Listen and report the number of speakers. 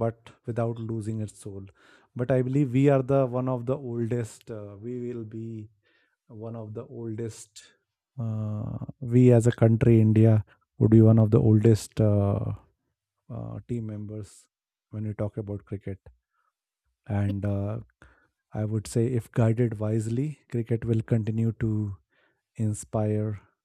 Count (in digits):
1